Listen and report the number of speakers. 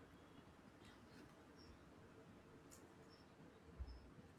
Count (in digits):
0